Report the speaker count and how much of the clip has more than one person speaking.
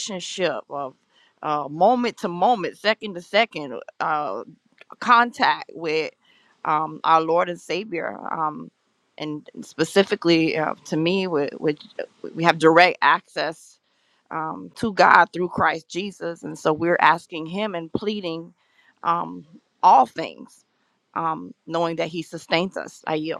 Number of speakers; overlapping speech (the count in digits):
1, no overlap